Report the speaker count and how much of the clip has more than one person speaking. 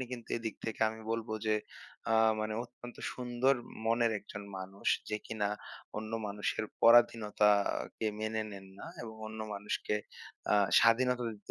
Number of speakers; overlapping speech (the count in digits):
1, no overlap